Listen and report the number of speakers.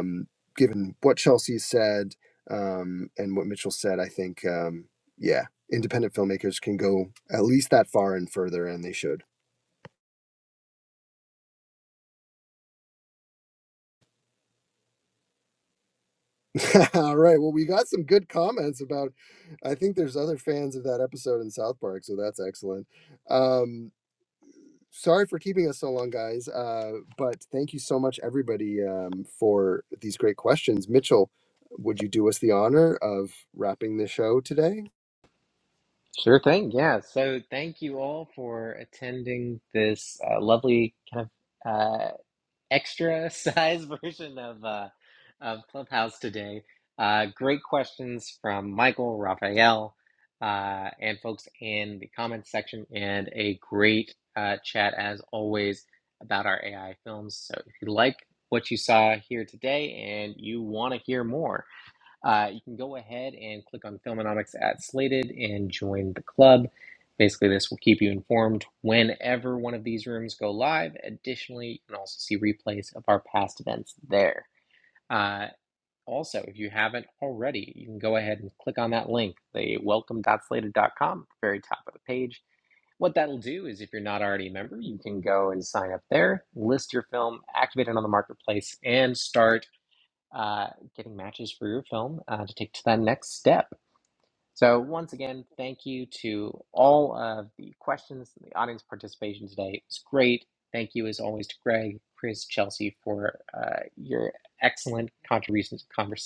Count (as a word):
two